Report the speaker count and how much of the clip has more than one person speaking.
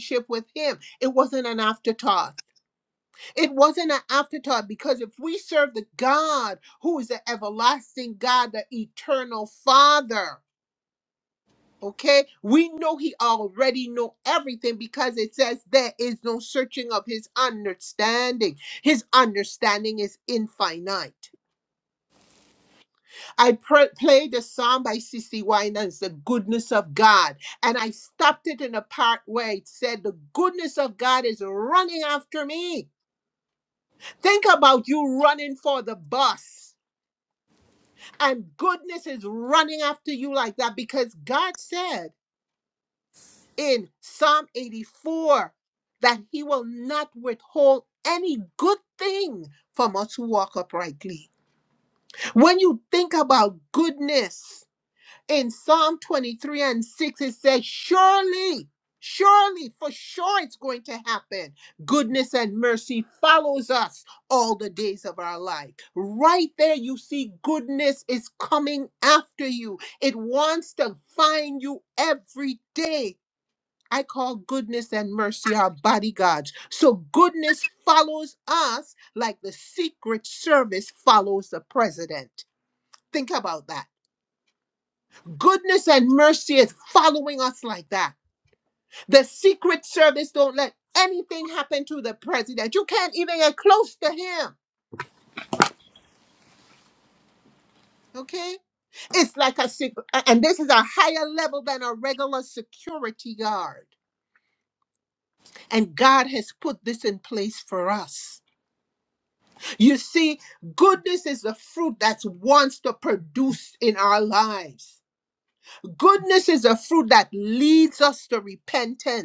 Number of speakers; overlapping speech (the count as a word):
one, no overlap